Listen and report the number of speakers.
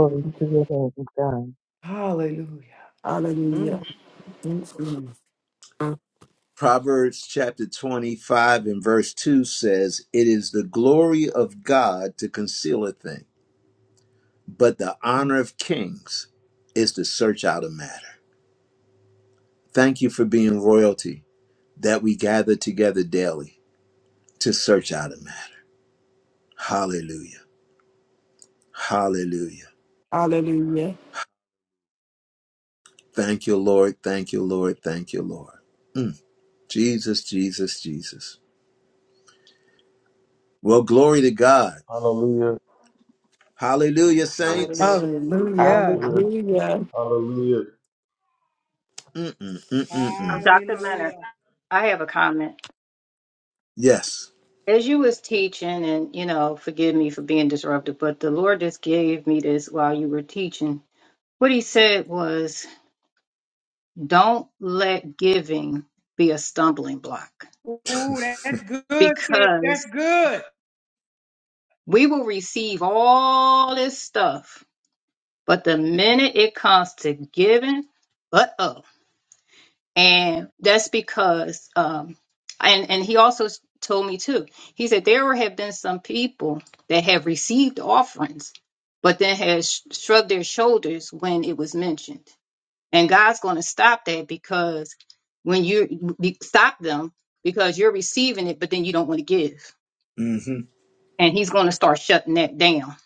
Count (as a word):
seven